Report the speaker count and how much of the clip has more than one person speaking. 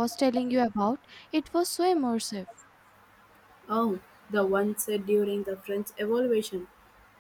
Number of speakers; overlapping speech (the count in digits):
2, no overlap